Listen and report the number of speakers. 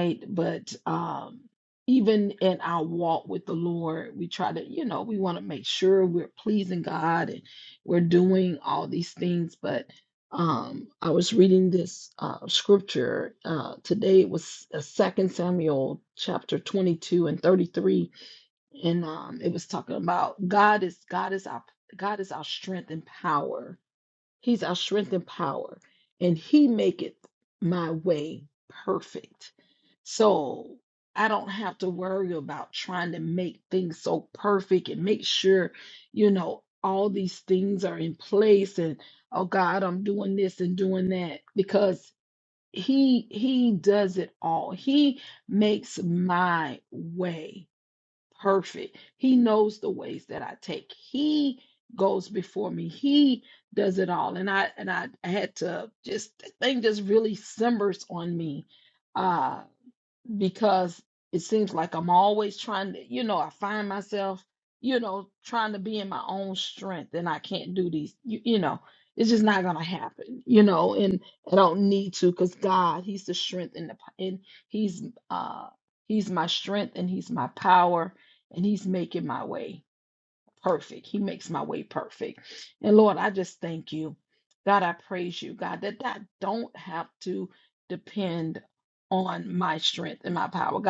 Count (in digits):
1